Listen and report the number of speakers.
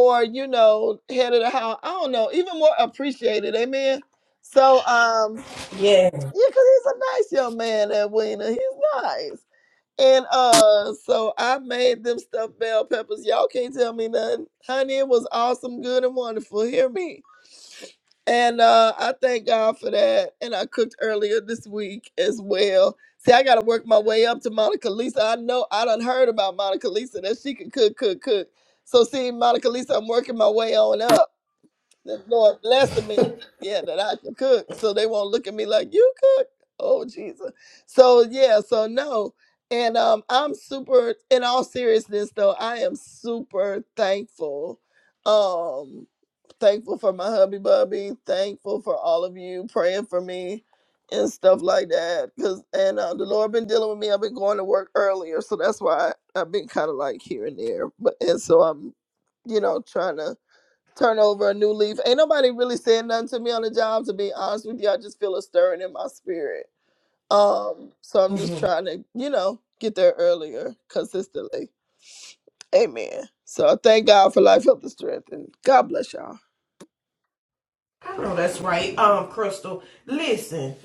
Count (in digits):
2